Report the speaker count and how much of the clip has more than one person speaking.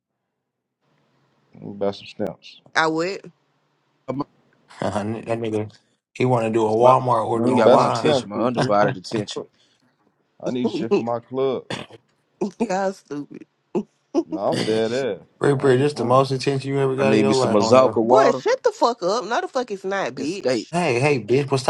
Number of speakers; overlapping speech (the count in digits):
4, about 19%